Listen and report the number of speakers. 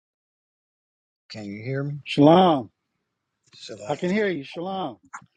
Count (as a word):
two